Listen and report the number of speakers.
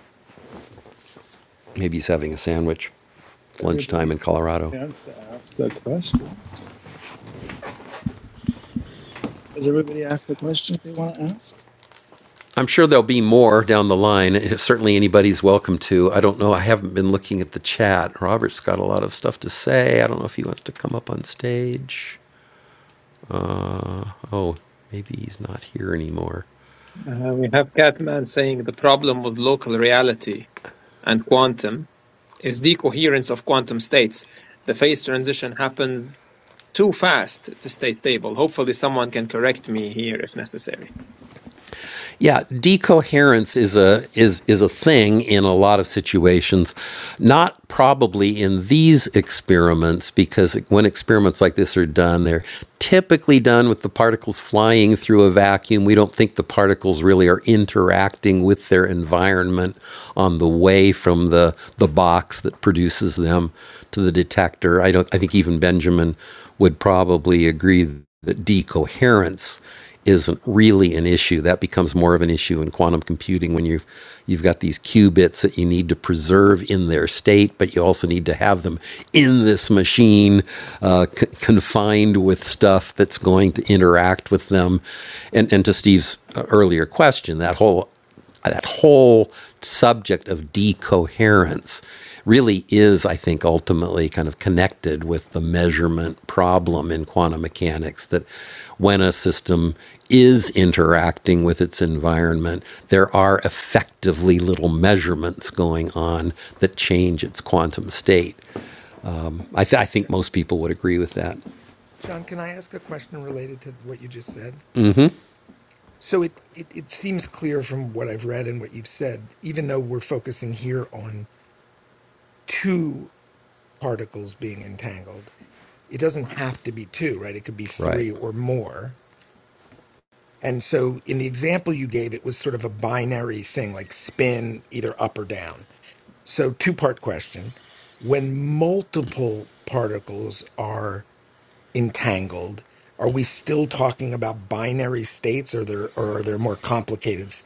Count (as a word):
four